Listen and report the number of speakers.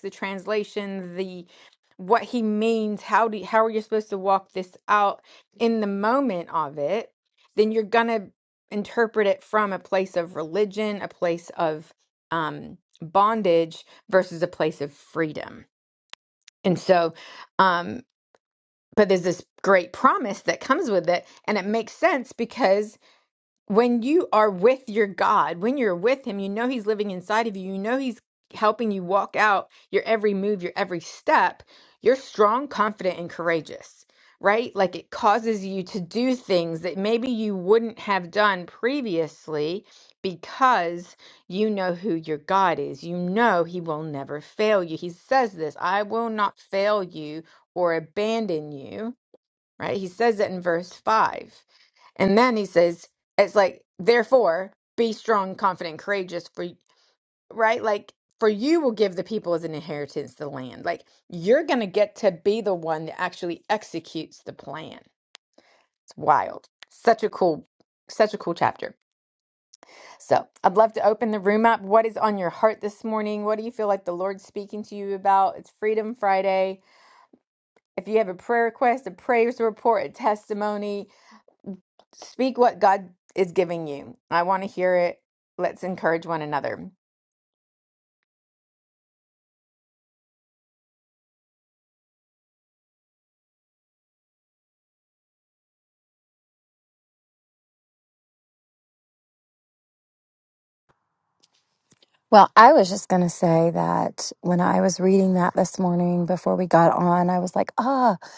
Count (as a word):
two